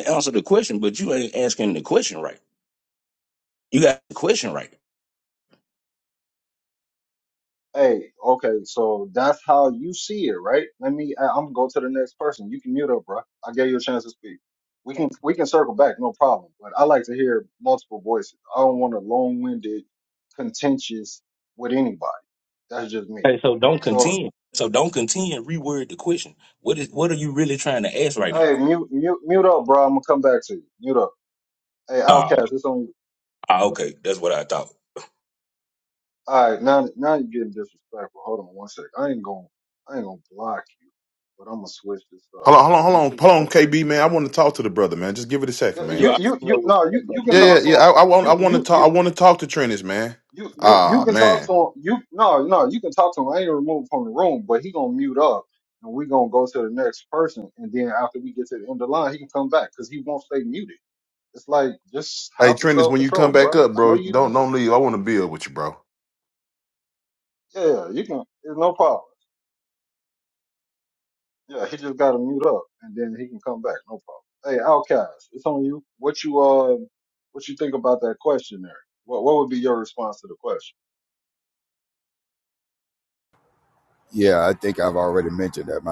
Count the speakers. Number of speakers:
four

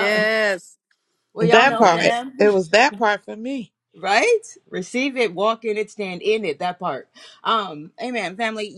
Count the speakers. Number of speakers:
three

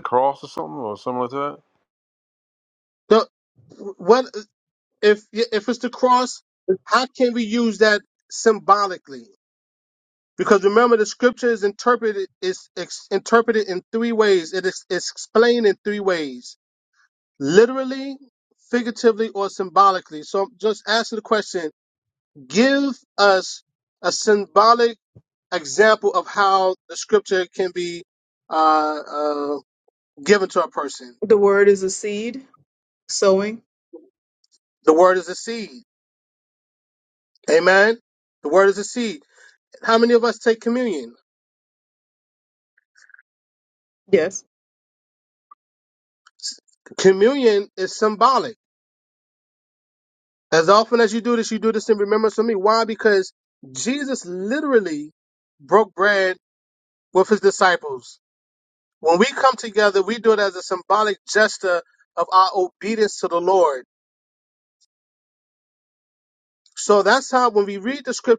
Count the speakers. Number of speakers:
three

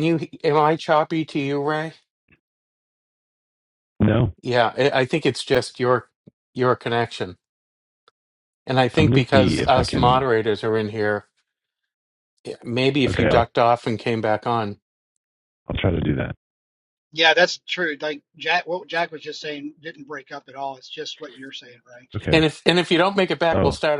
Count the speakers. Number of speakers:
three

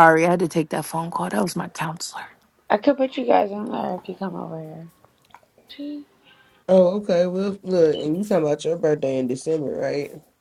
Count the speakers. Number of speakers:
three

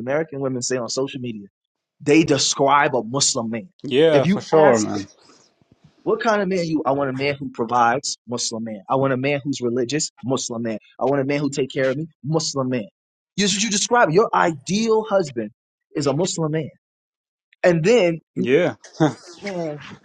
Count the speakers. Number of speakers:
two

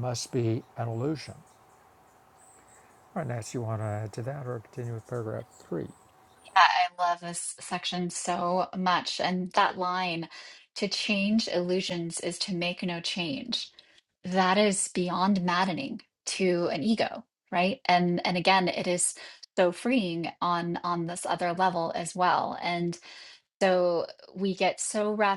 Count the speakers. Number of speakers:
two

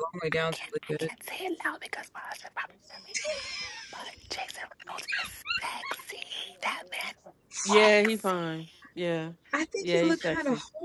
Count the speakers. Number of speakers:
three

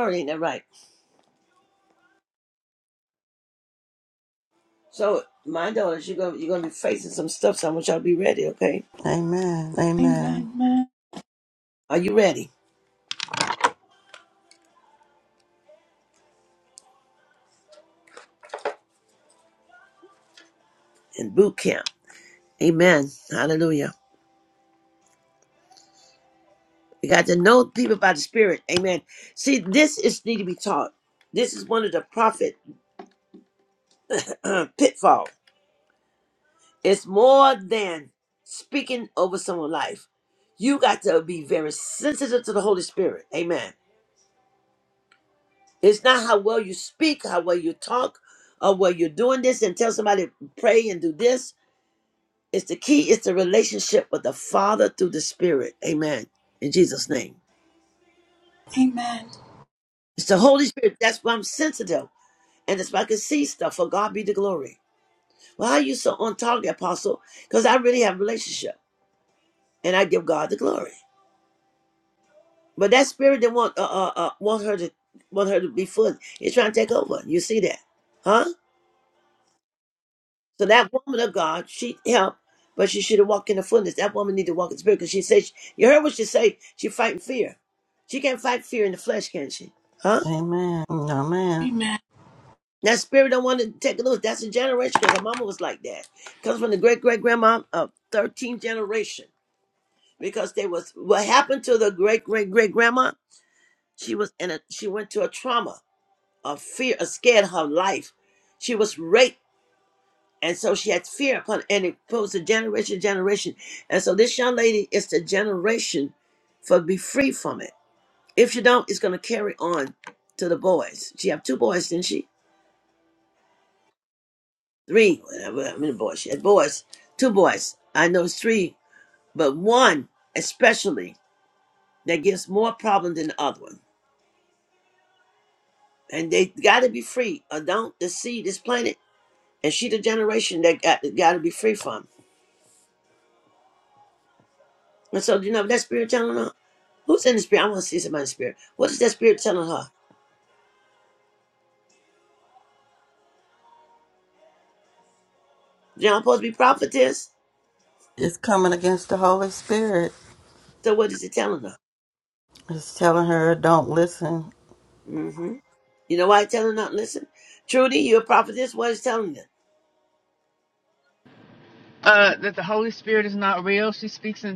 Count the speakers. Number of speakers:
four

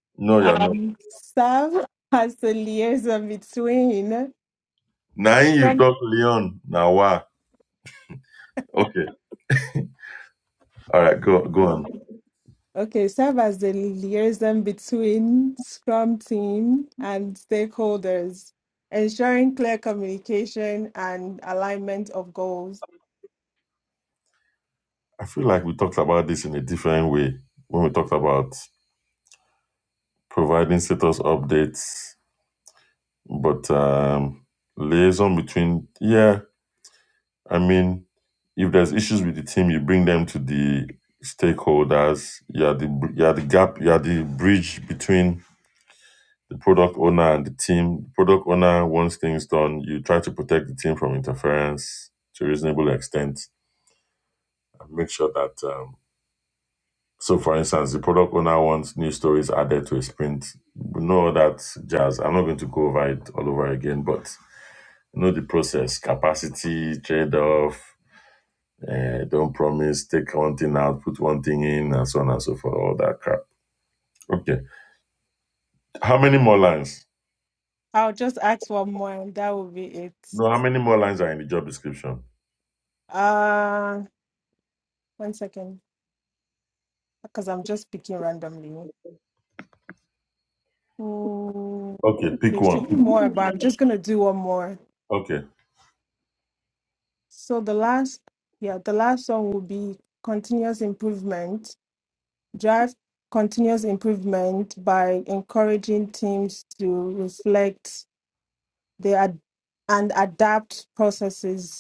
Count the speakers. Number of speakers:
two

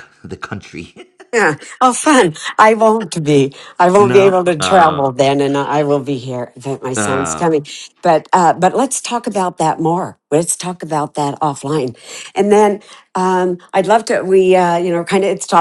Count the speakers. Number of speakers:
two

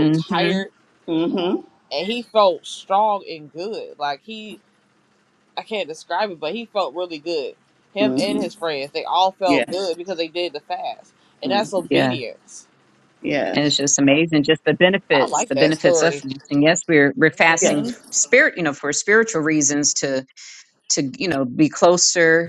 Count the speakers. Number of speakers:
three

